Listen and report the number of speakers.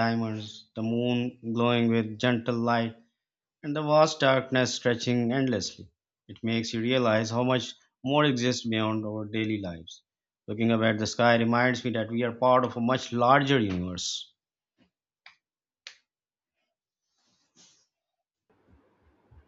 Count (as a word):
one